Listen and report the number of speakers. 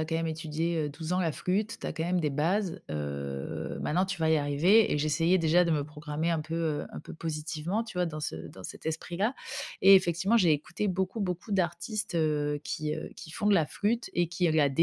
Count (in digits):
1